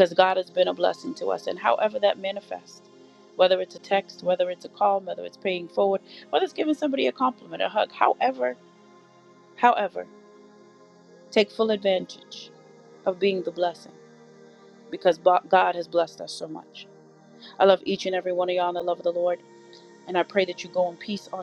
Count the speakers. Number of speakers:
1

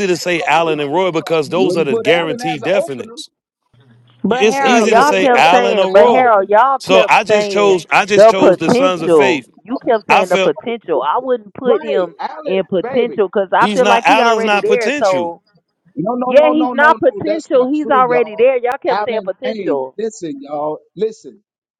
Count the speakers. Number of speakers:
3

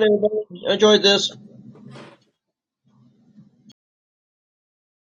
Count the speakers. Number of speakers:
1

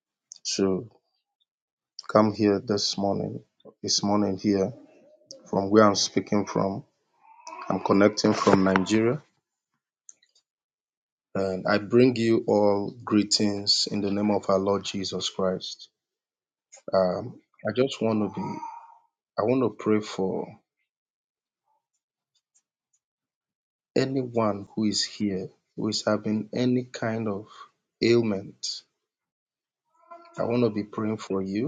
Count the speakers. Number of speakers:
1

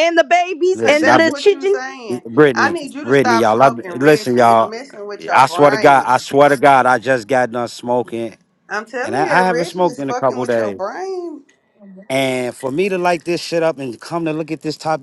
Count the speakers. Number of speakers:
3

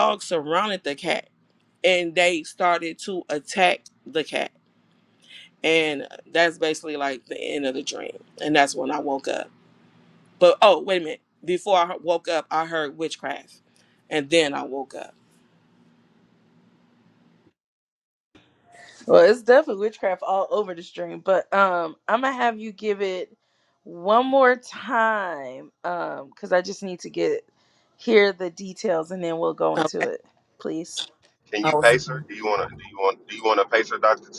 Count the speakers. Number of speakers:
3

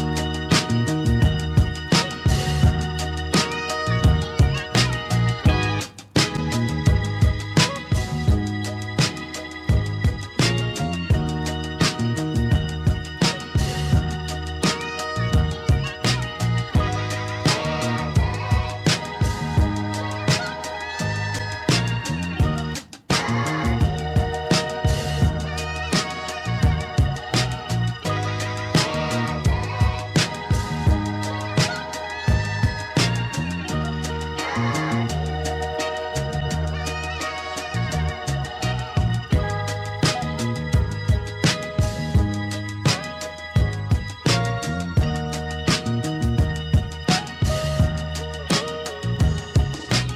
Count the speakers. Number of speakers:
0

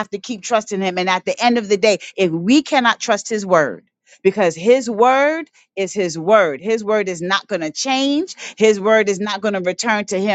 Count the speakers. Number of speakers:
1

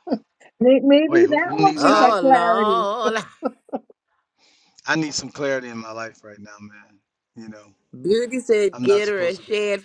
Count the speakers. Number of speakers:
3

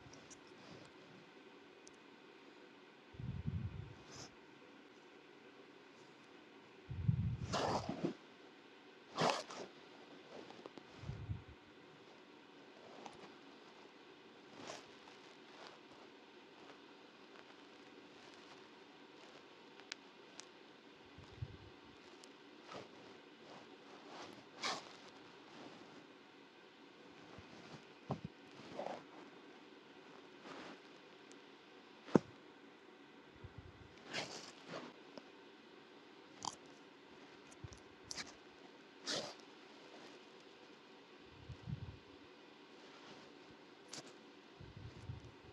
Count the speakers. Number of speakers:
0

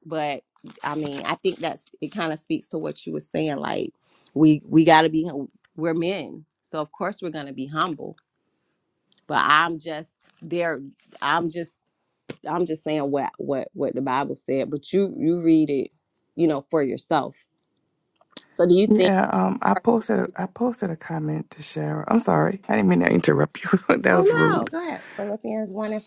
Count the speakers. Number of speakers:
2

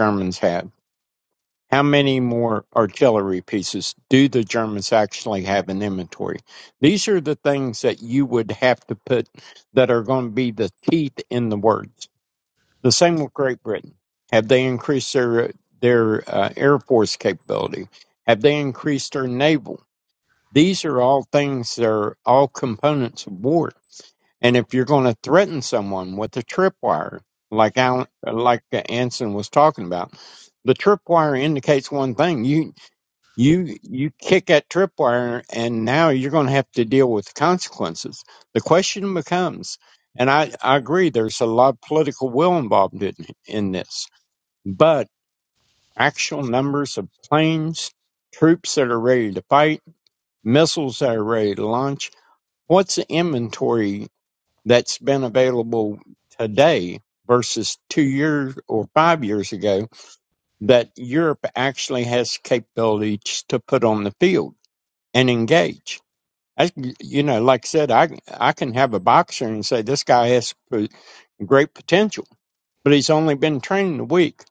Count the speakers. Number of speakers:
1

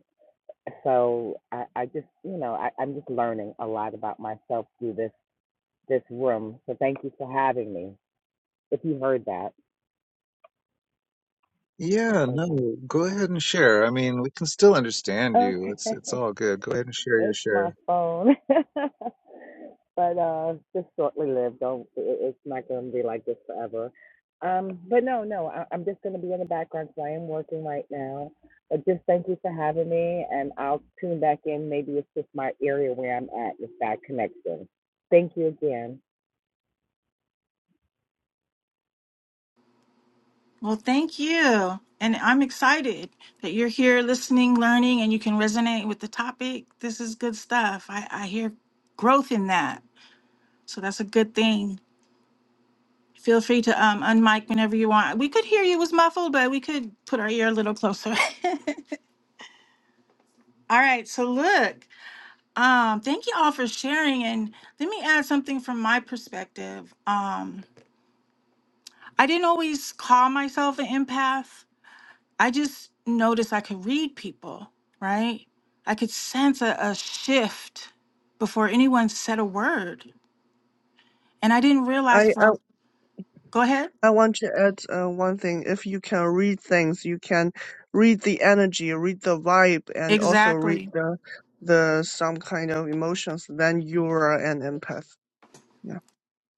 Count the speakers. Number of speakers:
4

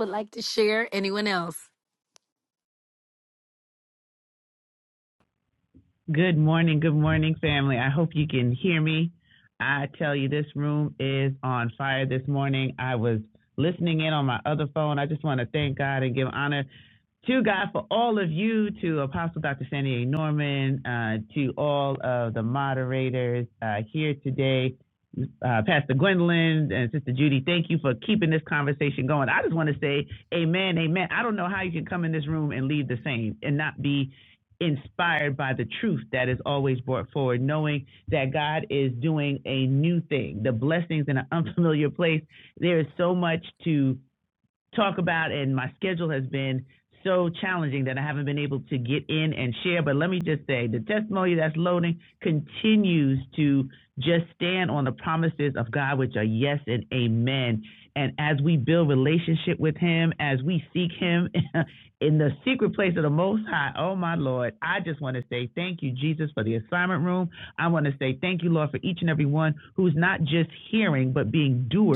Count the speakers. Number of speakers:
2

